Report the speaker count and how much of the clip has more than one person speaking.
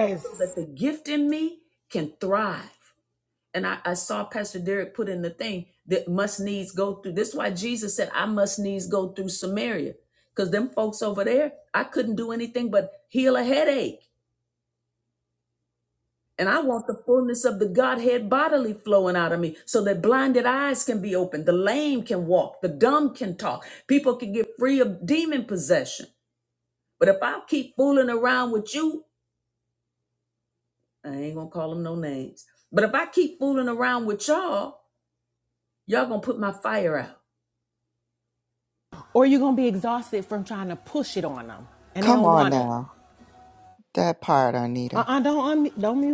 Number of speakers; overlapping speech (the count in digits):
3, about 2%